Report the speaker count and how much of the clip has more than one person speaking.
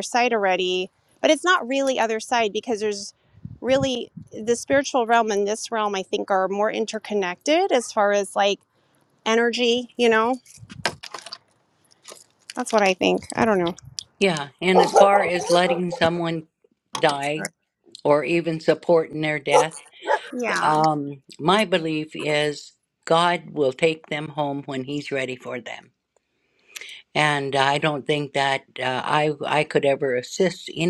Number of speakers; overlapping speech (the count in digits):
2, about 1%